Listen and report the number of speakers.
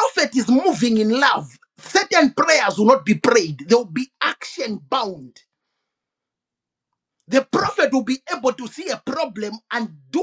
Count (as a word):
one